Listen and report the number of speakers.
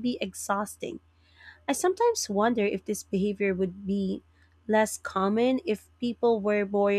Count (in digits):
1